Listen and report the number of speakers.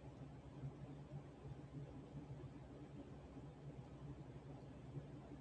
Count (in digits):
0